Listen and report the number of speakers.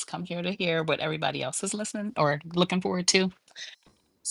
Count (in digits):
1